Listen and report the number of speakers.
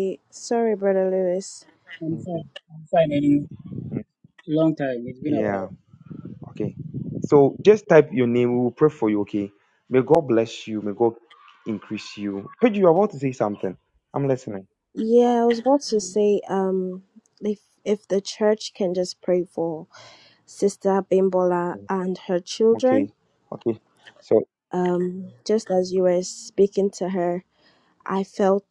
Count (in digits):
3